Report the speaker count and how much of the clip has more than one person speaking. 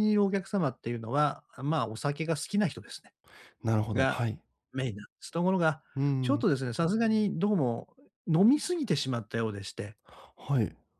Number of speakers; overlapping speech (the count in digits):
2, about 4%